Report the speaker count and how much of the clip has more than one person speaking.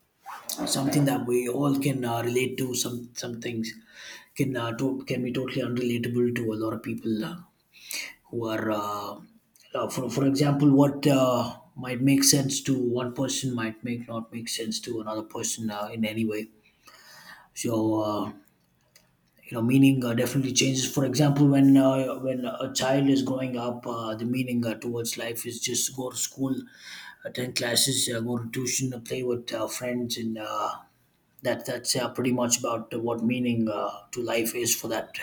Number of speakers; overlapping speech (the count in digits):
1, no overlap